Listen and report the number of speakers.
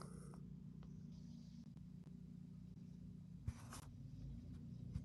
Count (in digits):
0